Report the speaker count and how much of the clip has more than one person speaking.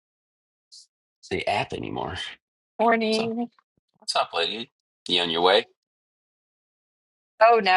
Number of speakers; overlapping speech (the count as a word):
two, about 2%